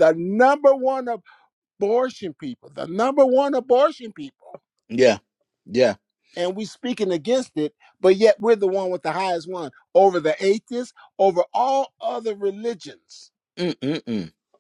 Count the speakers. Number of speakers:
2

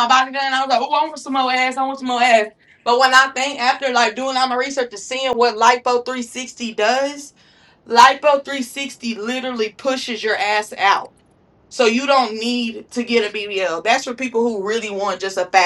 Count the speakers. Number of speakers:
1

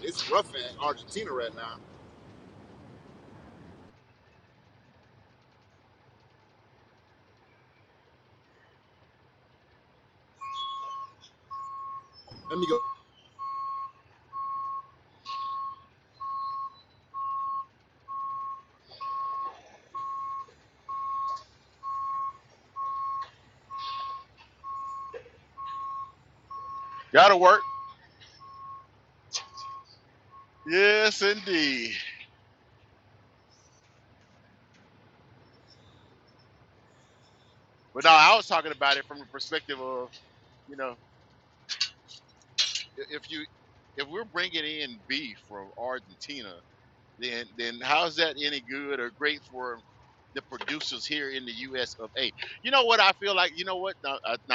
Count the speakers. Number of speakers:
2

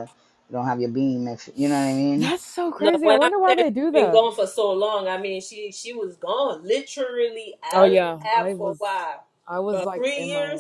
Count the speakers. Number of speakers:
3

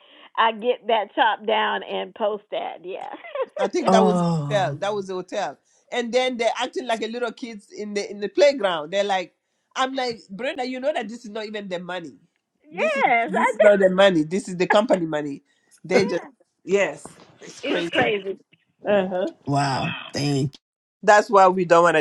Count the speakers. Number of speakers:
3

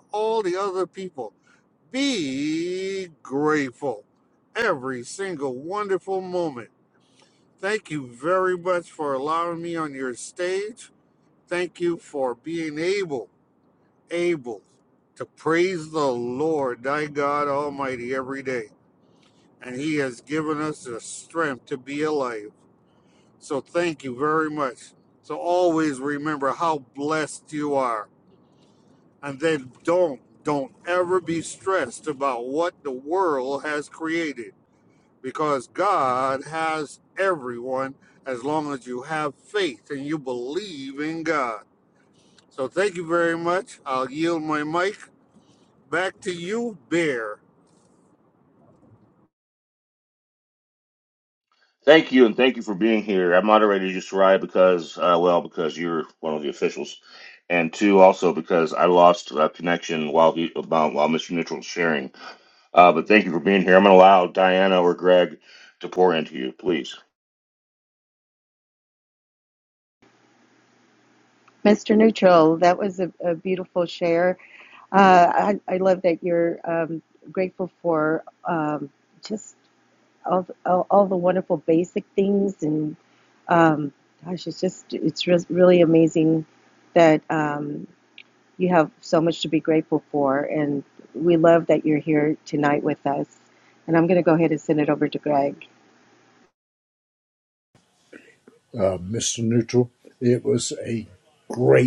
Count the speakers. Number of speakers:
4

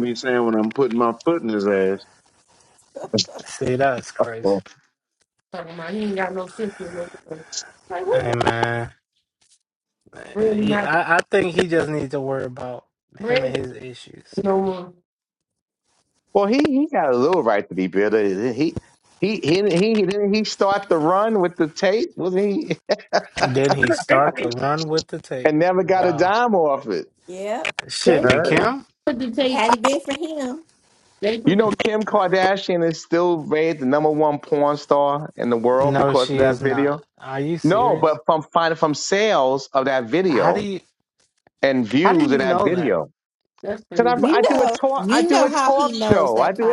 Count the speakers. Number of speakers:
5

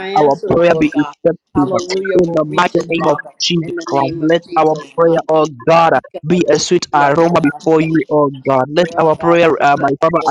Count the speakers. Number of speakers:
2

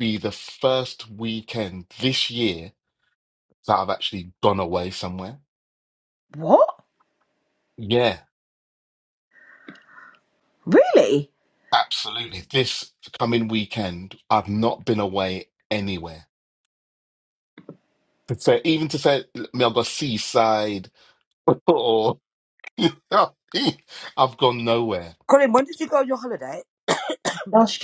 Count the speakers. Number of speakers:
3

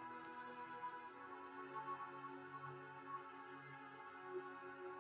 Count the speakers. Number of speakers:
0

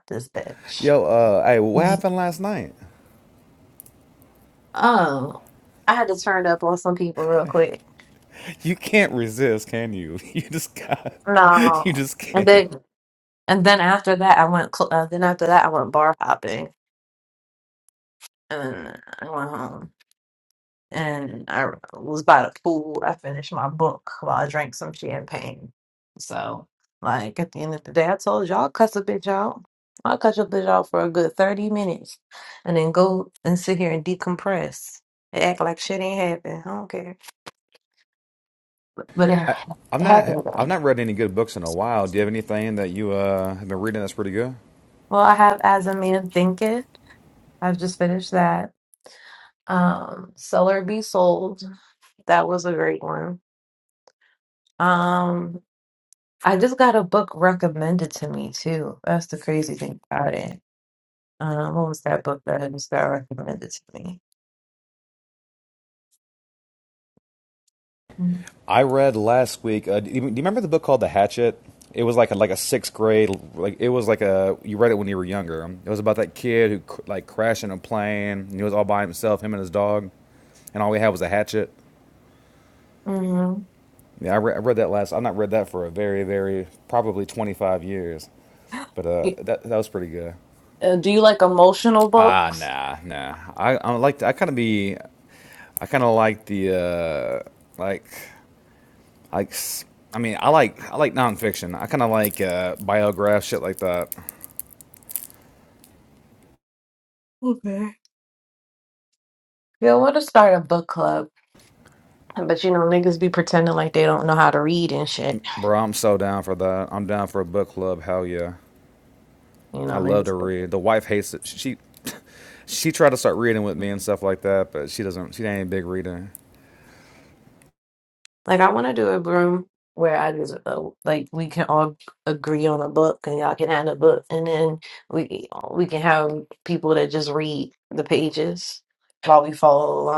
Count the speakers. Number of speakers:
2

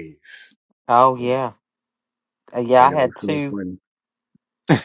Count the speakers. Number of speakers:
2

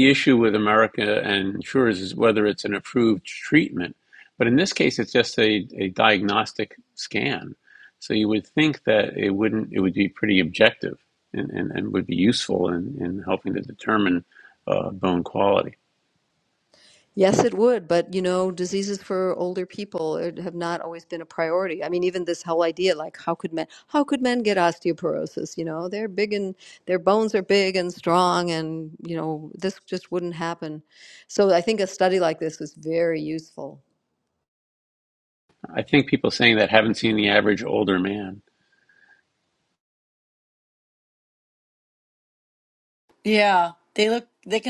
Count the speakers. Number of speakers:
3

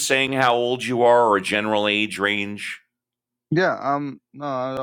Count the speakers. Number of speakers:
2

